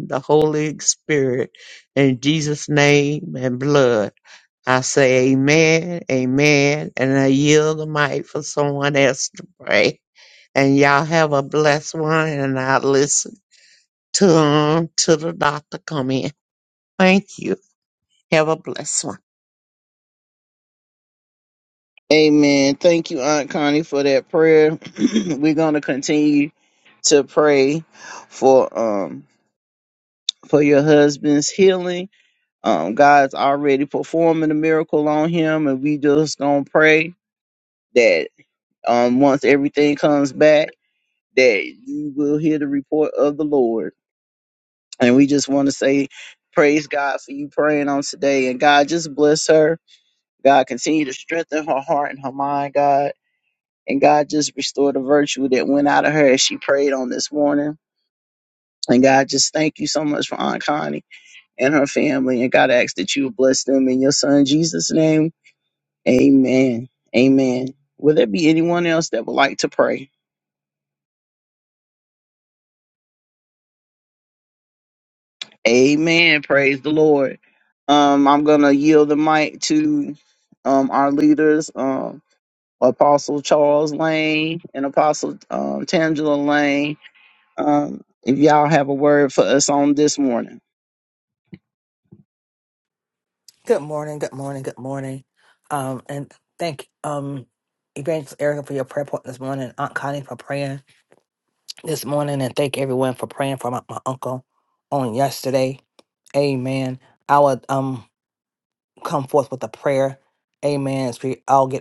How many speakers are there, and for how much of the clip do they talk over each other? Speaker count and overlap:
3, no overlap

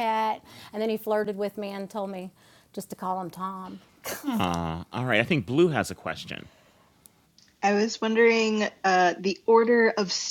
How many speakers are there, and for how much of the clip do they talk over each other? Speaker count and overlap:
3, no overlap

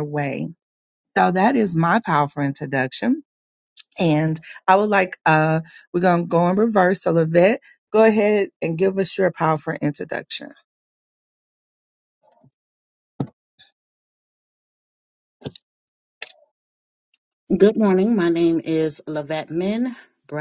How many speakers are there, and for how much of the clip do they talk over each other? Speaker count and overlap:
2, no overlap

